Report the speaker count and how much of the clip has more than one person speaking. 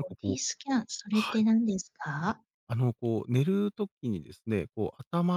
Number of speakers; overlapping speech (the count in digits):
2, about 13%